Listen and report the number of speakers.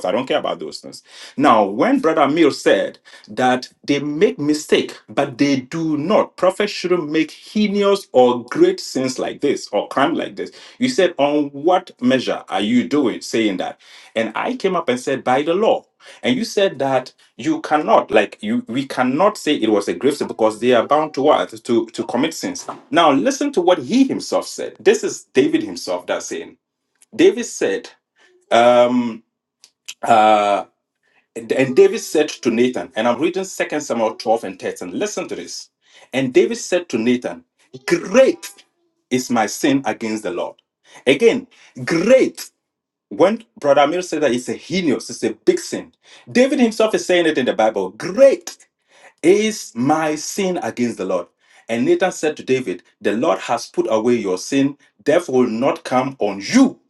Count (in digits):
1